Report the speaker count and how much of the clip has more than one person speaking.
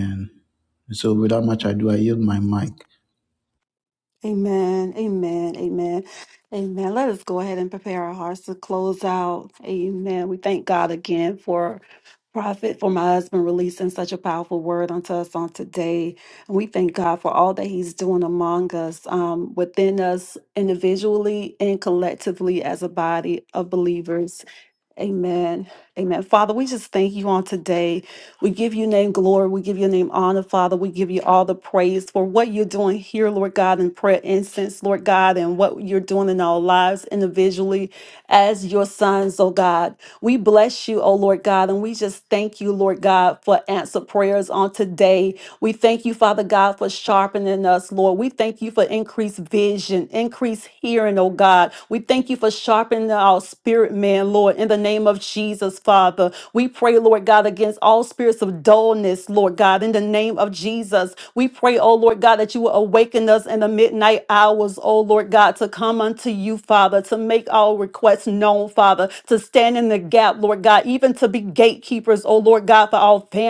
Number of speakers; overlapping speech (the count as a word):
two, no overlap